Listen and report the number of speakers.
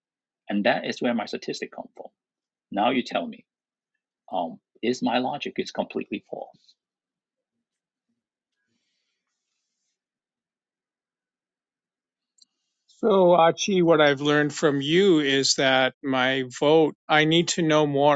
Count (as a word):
two